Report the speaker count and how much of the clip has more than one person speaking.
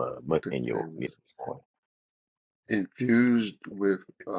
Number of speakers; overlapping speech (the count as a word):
two, about 13%